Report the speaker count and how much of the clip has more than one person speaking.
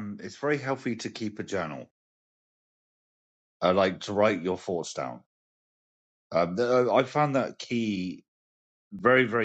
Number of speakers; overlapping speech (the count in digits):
1, no overlap